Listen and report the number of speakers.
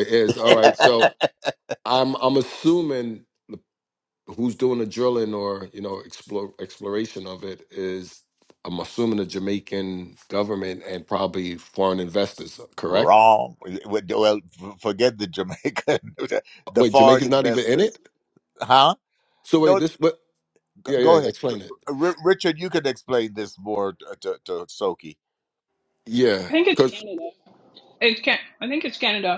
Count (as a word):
three